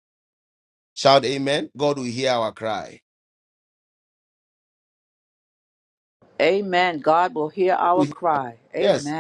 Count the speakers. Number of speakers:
two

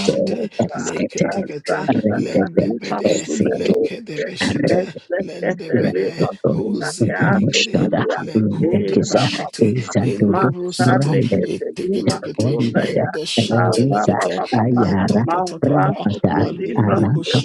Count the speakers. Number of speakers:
three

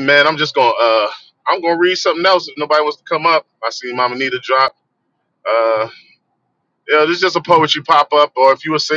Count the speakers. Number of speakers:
one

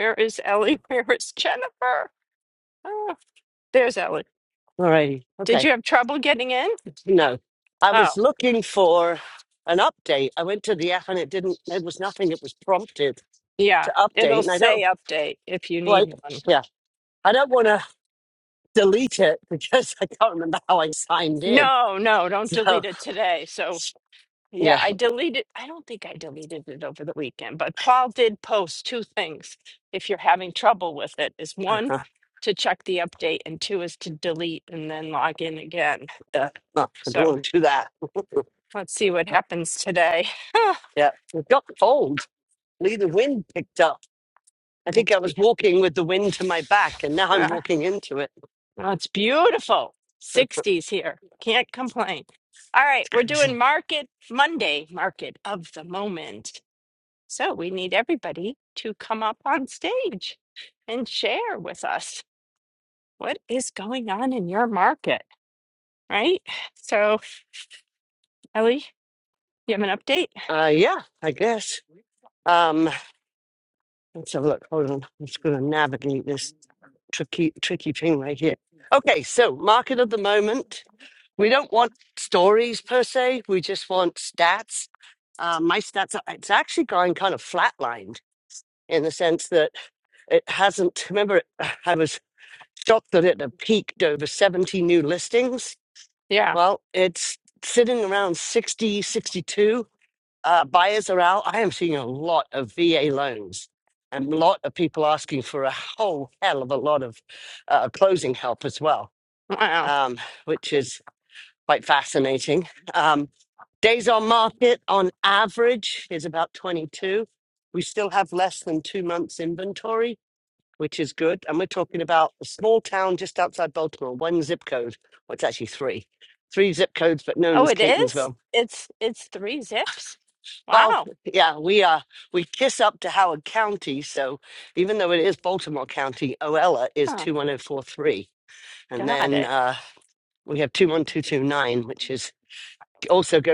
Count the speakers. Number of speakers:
two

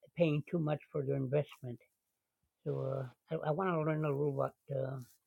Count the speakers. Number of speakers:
one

